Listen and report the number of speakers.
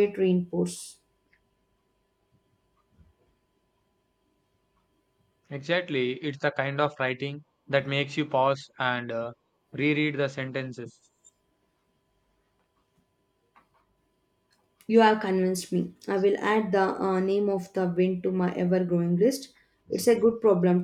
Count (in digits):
2